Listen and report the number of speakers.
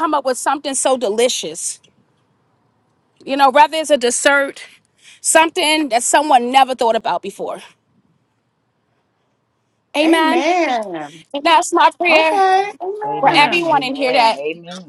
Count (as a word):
three